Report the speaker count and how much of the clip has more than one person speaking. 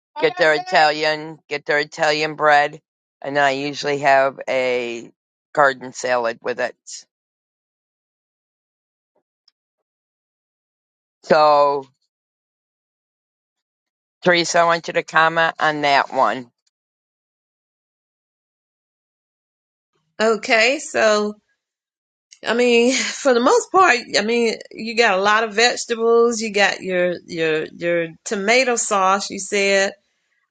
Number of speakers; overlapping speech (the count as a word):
two, no overlap